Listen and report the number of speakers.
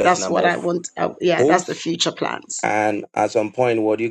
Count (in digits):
2